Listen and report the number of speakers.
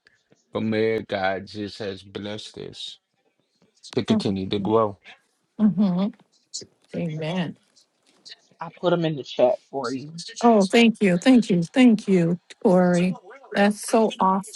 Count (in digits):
3